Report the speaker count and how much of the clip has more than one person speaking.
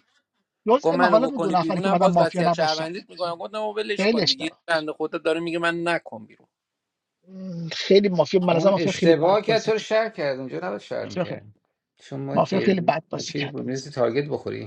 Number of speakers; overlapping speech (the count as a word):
three, about 35%